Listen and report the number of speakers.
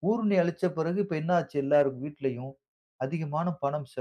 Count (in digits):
1